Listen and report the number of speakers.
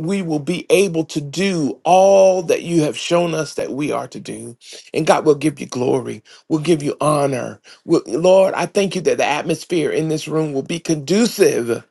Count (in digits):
1